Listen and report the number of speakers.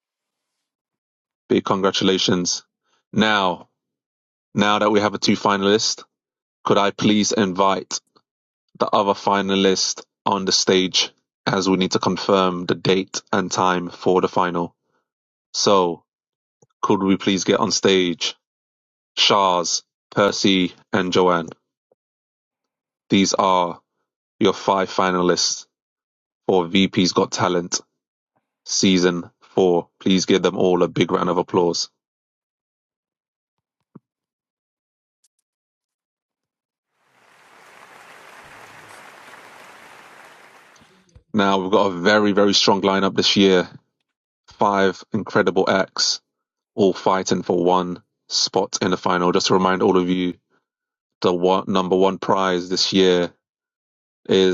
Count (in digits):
1